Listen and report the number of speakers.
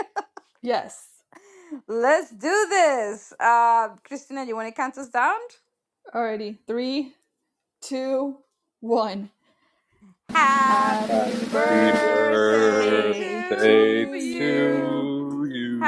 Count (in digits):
3